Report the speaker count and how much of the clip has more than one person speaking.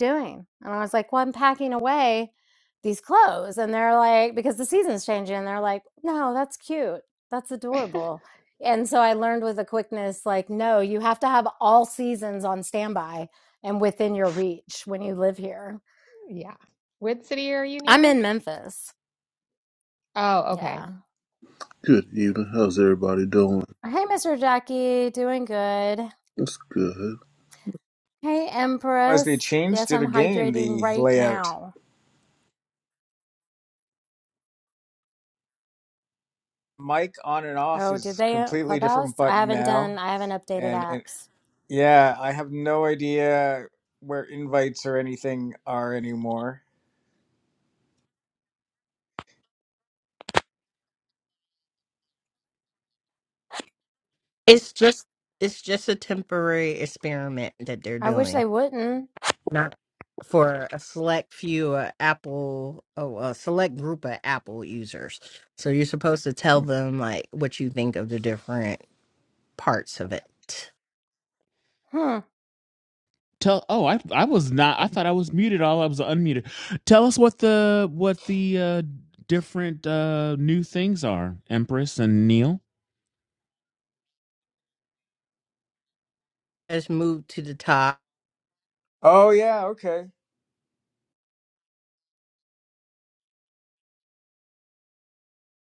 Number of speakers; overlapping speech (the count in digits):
6, about 6%